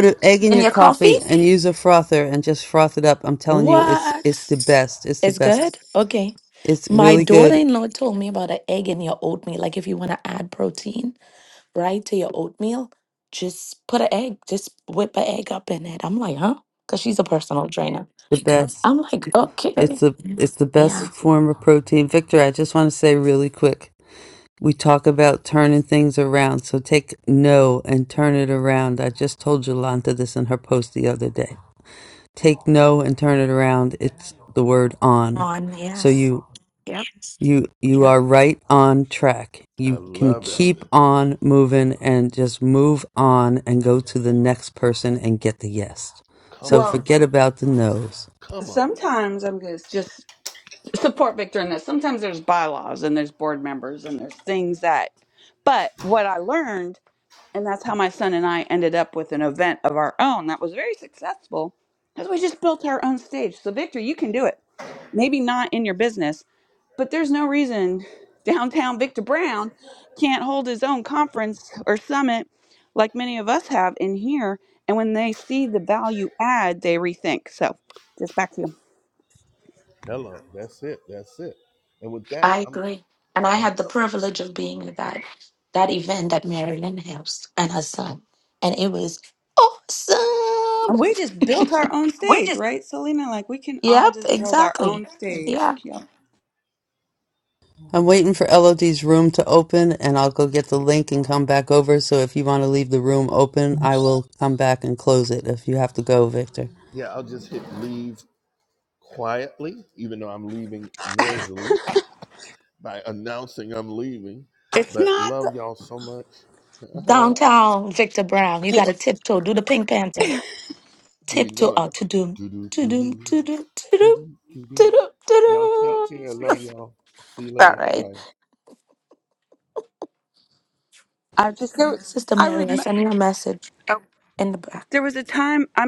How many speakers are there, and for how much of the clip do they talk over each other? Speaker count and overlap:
4, about 9%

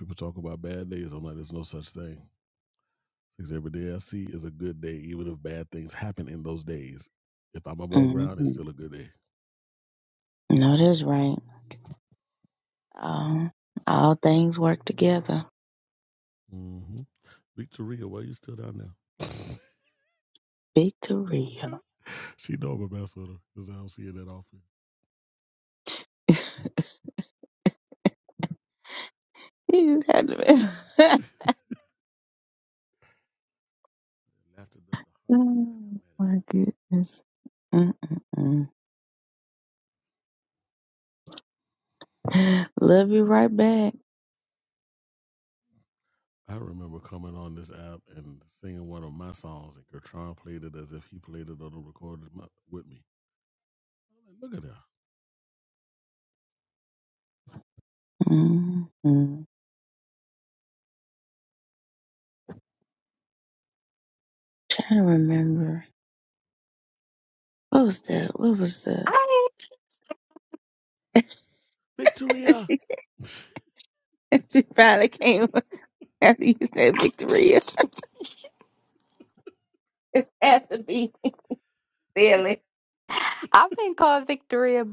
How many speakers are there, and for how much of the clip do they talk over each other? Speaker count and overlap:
3, about 1%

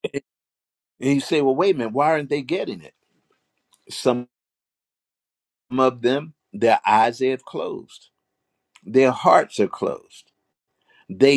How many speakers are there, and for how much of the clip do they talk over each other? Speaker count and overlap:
1, no overlap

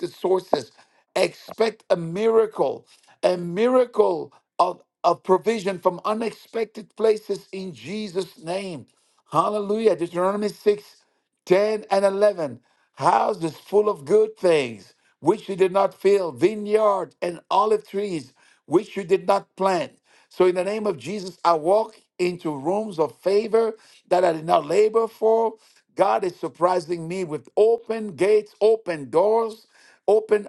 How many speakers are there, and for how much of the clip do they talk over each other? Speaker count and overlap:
1, no overlap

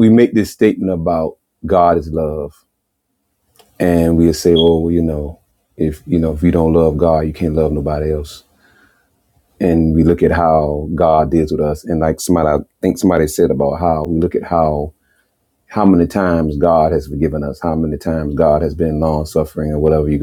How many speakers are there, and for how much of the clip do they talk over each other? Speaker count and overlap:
1, no overlap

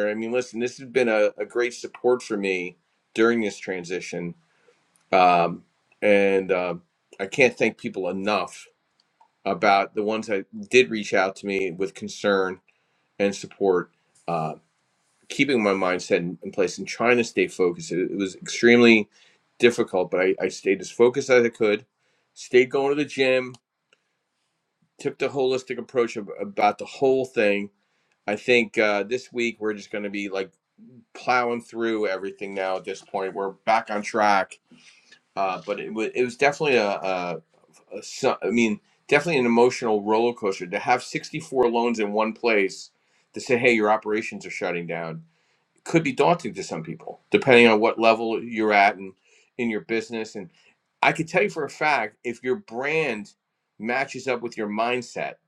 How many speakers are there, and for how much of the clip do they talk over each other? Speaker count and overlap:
1, no overlap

